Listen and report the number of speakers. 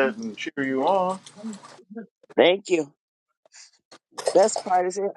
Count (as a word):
two